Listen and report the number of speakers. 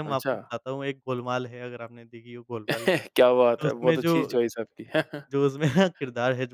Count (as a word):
two